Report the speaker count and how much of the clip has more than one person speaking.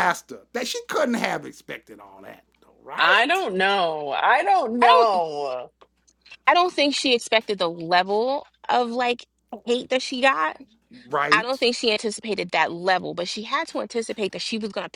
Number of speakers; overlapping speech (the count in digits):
3, about 5%